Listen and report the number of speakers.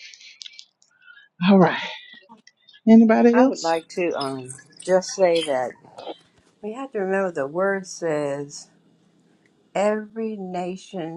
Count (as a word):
two